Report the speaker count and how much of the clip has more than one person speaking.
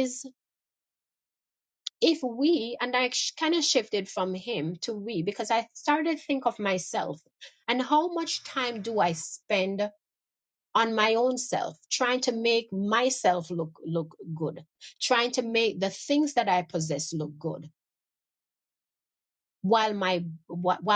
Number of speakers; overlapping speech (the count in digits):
1, no overlap